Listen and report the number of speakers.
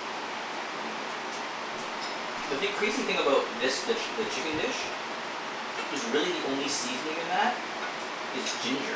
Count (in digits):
1